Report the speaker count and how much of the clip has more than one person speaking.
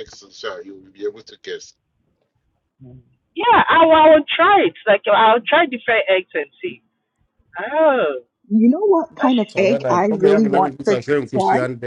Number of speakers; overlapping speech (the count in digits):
4, about 14%